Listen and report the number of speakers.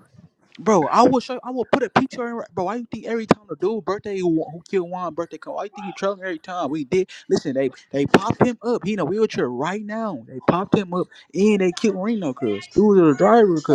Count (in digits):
1